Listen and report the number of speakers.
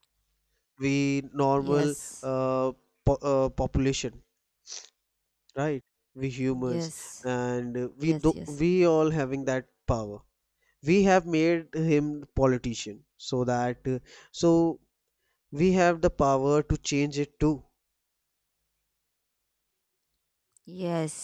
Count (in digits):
2